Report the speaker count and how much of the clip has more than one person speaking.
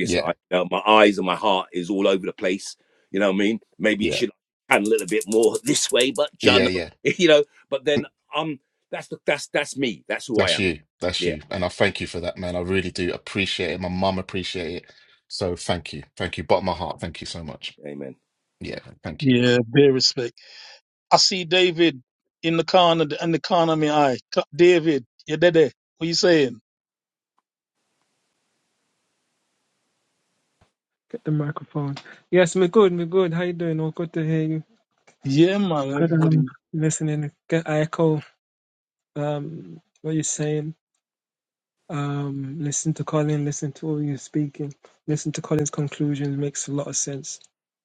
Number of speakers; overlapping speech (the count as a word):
four, about 4%